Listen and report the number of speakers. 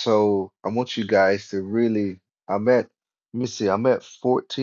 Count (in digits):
1